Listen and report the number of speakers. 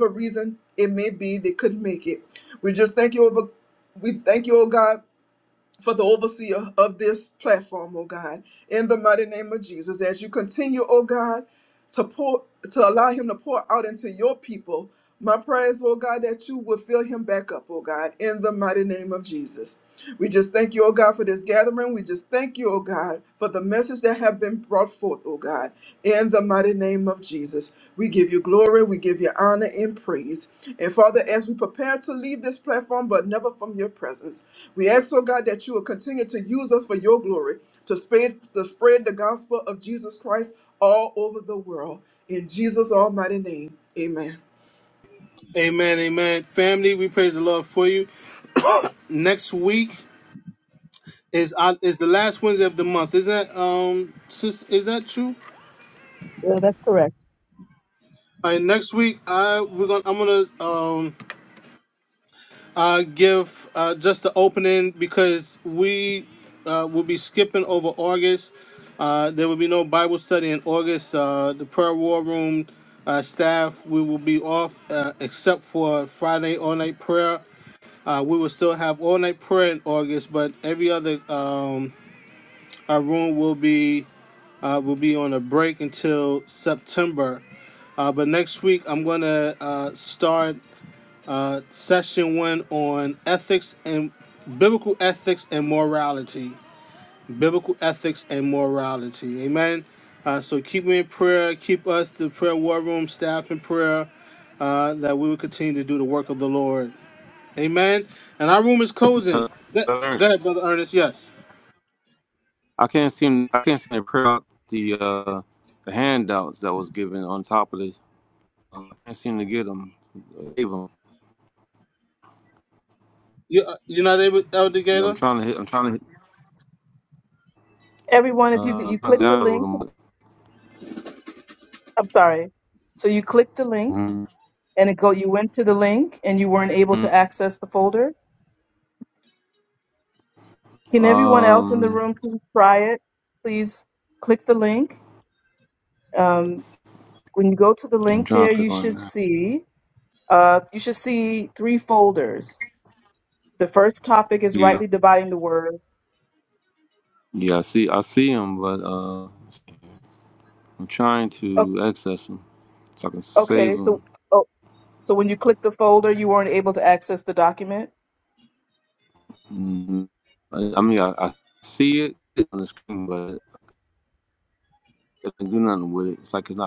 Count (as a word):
four